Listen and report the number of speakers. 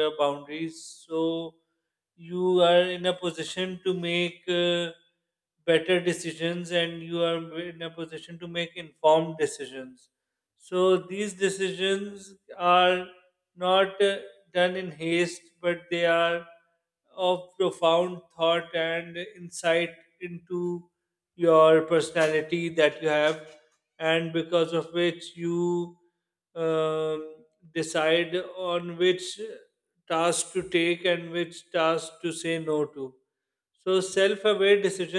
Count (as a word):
one